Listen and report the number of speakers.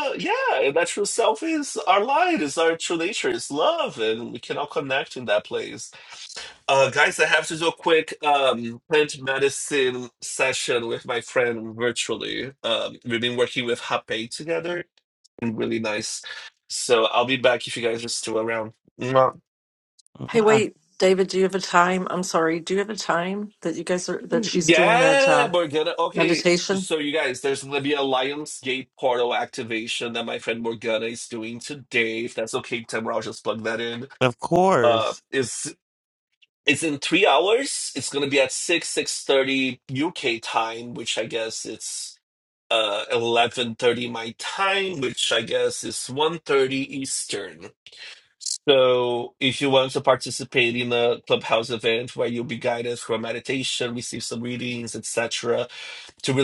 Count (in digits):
3